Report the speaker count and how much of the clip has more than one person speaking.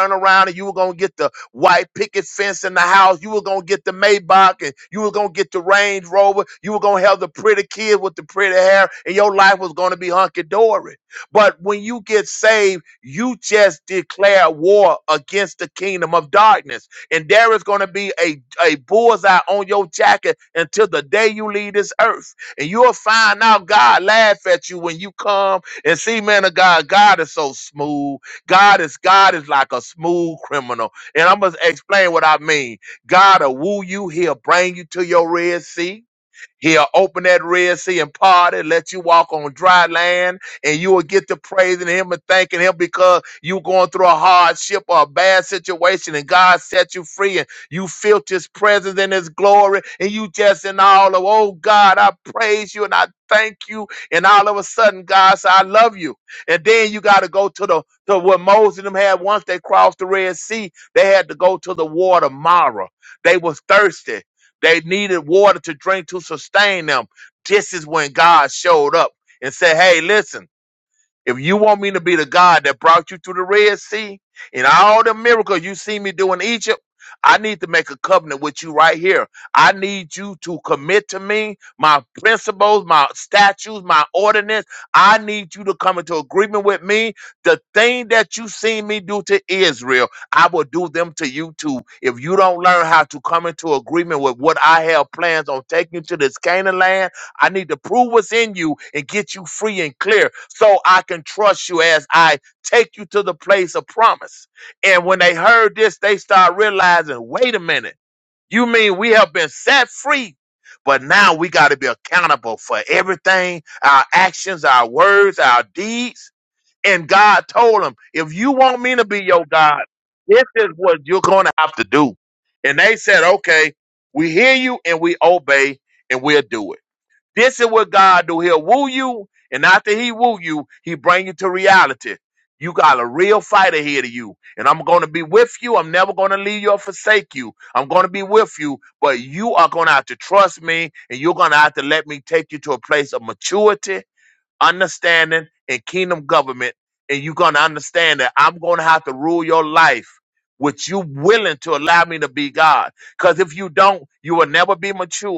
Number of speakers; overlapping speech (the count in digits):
1, no overlap